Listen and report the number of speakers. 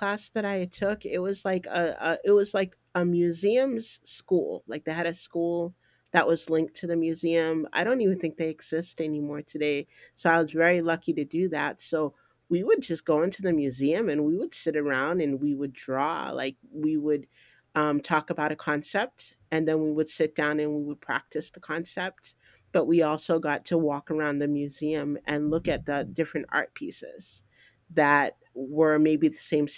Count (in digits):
1